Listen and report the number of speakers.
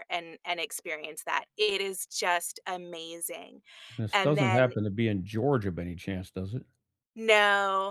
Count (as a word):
two